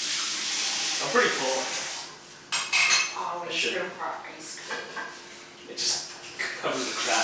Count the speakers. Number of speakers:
two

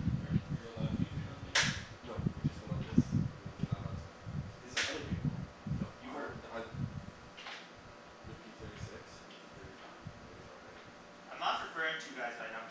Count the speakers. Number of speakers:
three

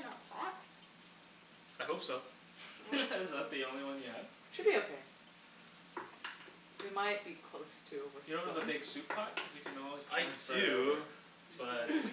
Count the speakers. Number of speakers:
four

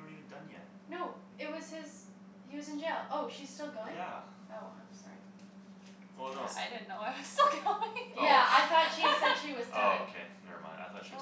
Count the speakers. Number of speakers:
three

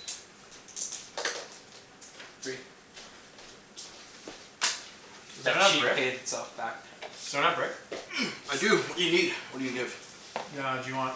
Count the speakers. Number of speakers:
three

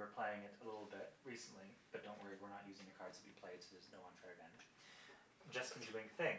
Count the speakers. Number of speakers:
one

